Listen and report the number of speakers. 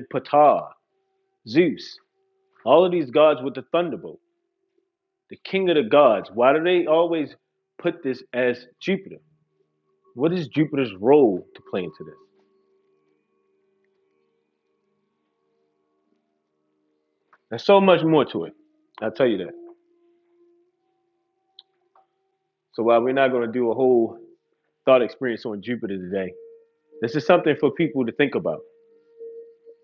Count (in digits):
1